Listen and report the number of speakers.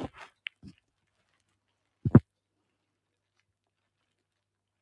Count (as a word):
zero